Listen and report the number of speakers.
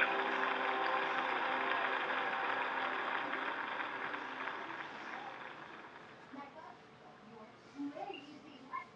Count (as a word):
zero